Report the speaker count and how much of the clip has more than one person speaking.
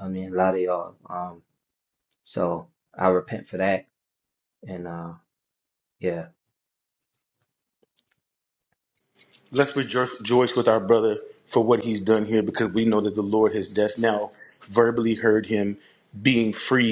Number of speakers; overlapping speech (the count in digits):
2, no overlap